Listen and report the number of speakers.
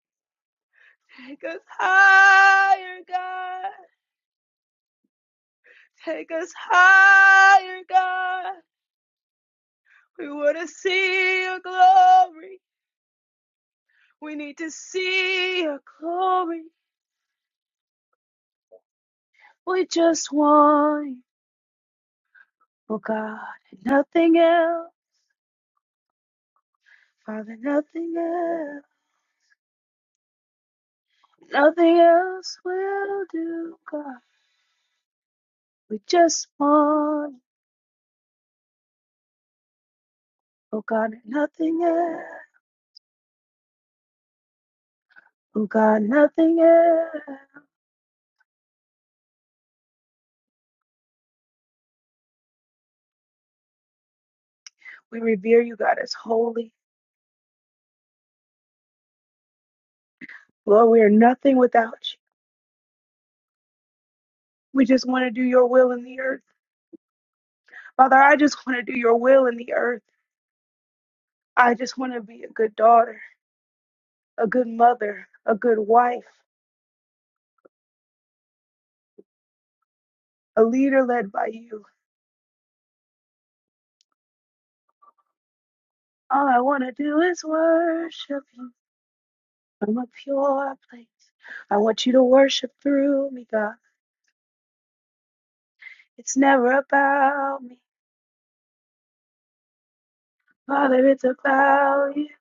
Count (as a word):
one